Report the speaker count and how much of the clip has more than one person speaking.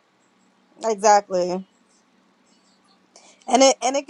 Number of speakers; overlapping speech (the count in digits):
1, no overlap